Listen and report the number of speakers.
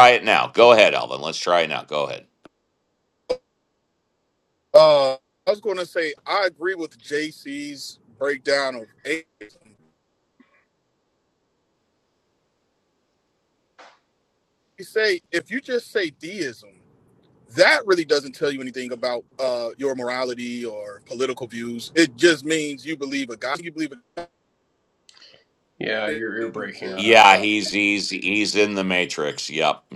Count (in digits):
3